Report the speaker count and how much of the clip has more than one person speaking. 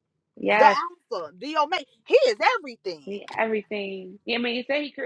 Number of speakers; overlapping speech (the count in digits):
2, about 2%